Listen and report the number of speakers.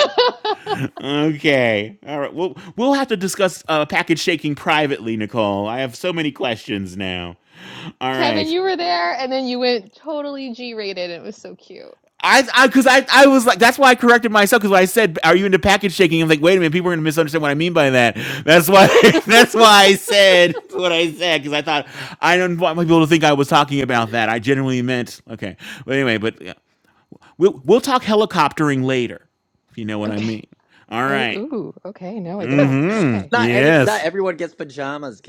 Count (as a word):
three